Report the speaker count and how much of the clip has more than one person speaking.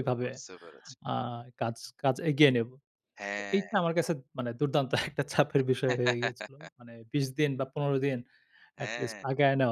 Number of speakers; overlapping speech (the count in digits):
2, about 8%